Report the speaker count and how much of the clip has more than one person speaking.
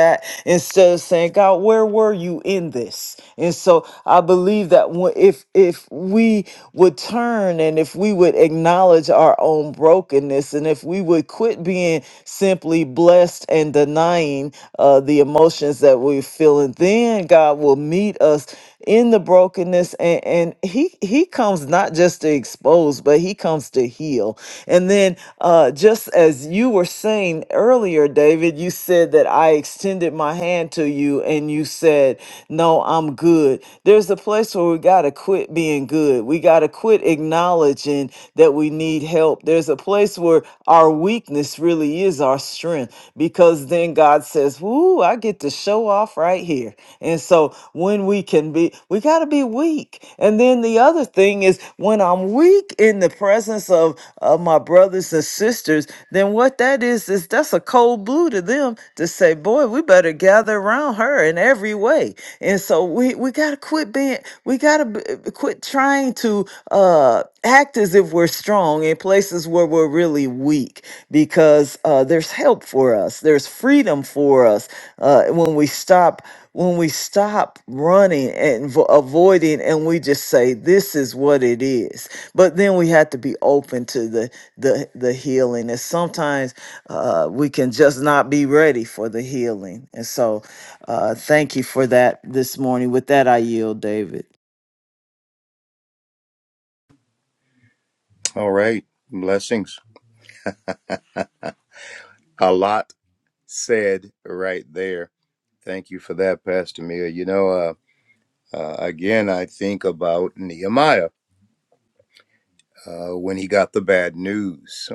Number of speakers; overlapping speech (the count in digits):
2, no overlap